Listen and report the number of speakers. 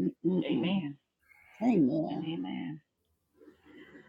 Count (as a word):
two